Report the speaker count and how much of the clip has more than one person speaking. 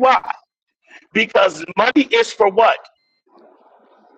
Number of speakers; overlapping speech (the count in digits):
1, no overlap